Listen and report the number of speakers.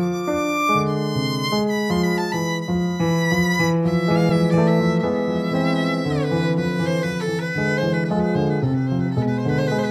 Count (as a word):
zero